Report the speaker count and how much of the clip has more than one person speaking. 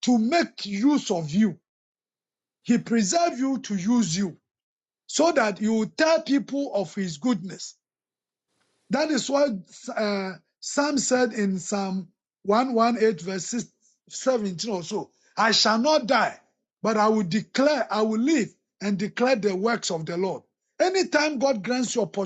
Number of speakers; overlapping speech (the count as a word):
one, no overlap